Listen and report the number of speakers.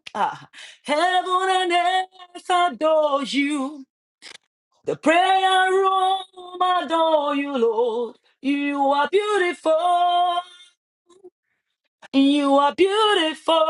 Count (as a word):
one